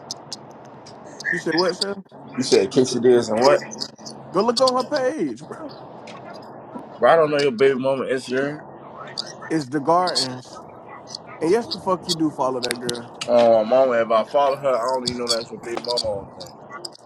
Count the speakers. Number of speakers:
2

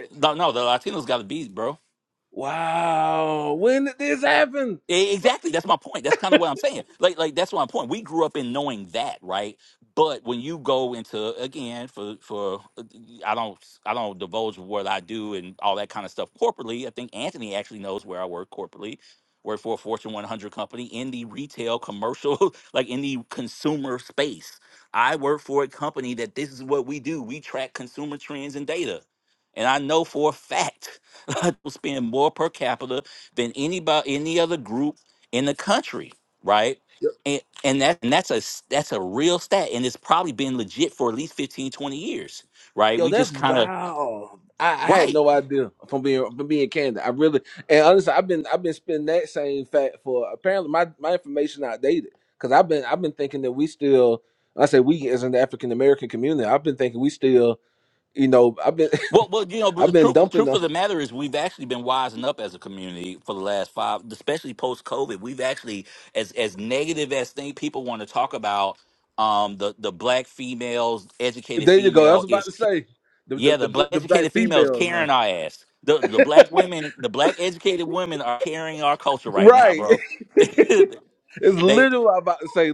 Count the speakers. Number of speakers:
2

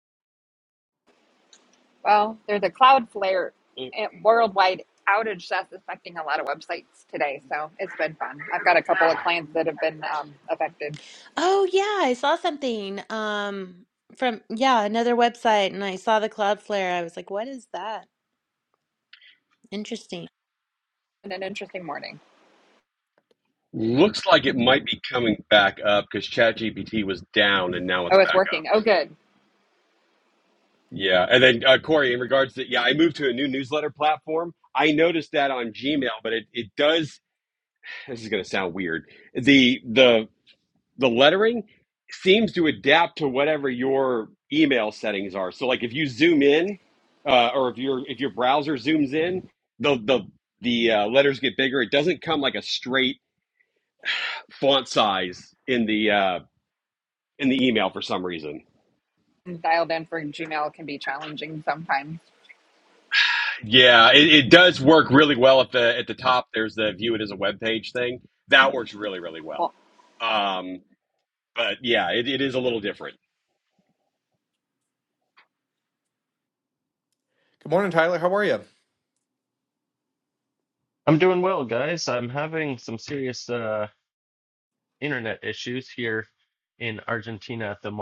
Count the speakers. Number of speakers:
5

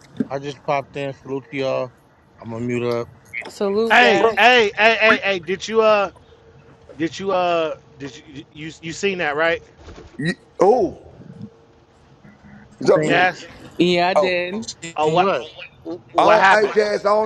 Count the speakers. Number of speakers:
4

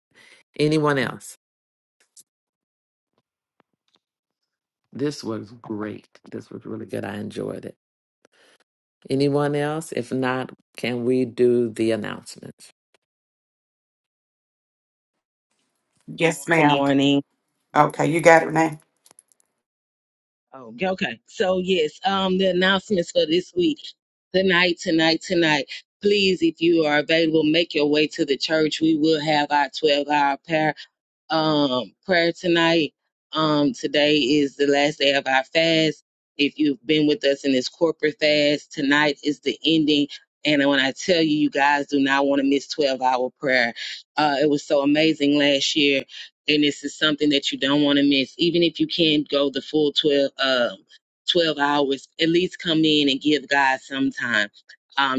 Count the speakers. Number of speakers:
3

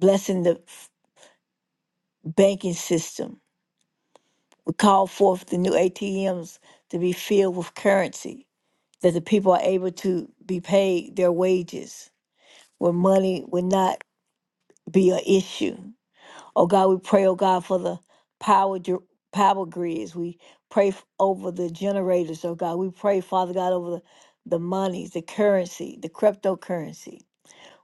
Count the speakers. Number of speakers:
1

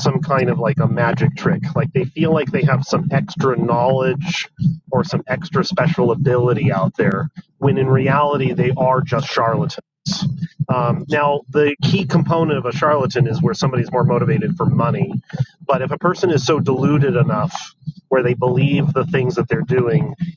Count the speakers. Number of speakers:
1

